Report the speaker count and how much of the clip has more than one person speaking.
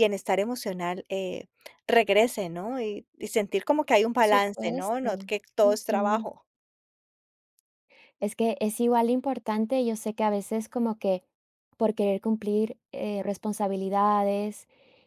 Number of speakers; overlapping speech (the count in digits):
2, about 10%